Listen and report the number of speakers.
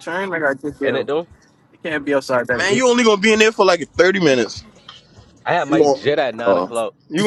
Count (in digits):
3